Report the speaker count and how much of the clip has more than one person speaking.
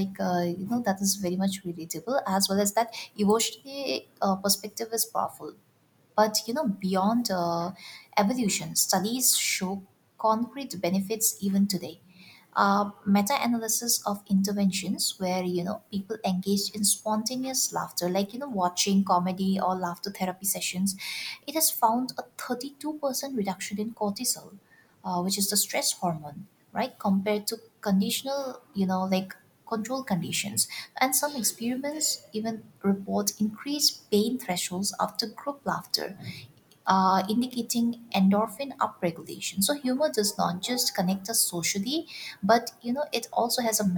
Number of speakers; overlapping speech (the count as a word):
one, no overlap